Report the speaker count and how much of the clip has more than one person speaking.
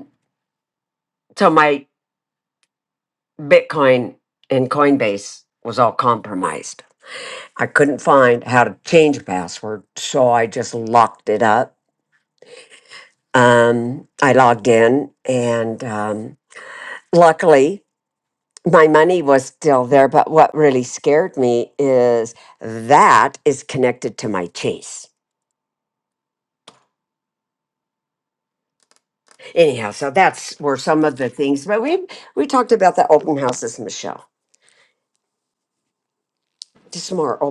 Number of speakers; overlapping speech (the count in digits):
1, no overlap